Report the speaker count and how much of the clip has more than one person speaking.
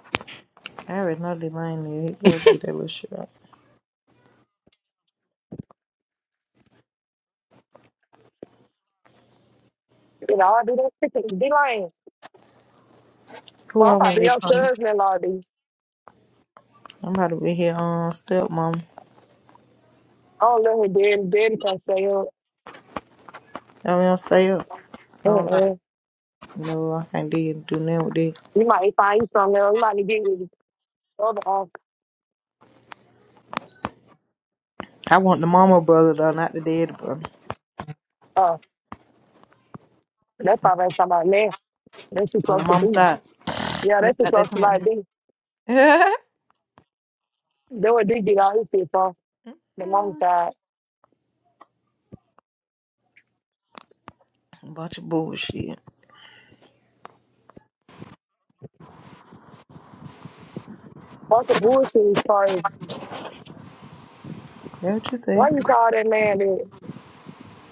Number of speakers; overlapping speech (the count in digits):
2, about 4%